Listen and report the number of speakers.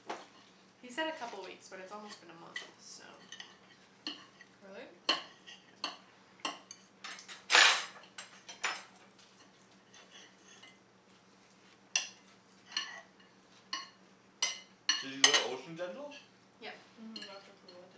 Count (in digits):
3